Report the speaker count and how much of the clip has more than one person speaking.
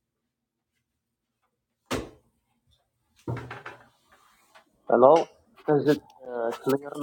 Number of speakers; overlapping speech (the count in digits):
1, no overlap